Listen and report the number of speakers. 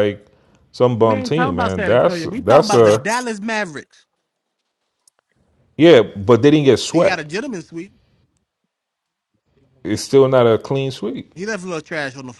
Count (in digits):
2